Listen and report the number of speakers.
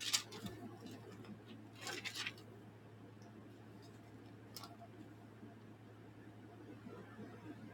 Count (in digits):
0